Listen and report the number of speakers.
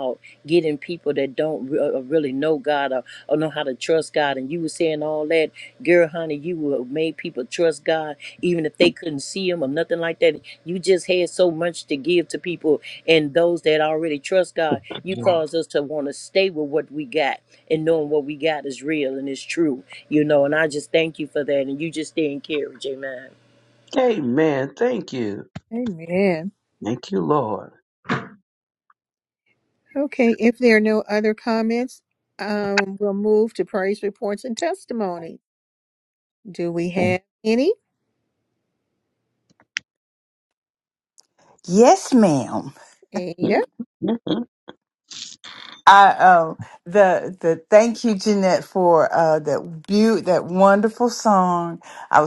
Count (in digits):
4